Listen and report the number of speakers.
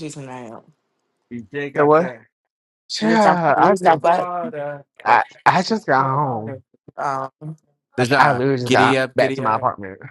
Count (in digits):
3